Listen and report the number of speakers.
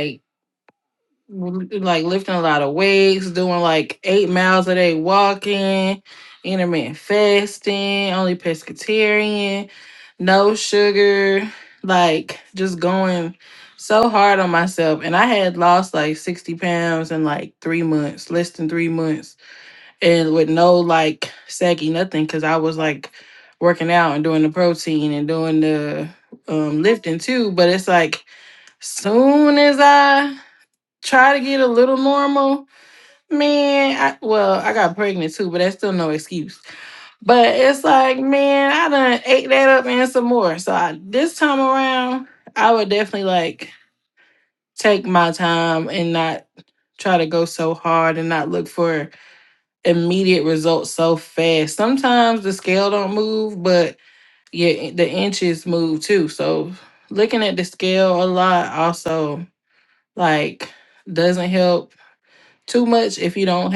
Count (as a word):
one